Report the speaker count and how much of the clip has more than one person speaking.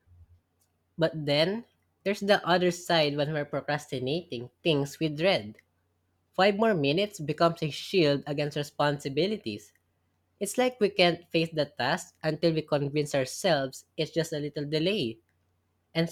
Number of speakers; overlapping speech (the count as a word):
one, no overlap